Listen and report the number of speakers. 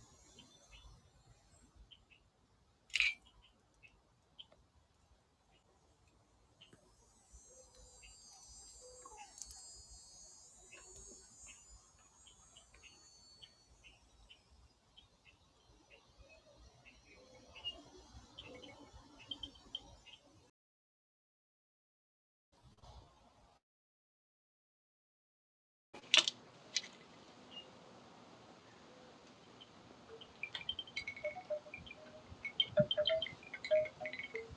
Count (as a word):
zero